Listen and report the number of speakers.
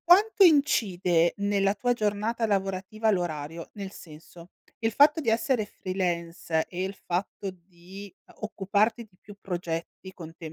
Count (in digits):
1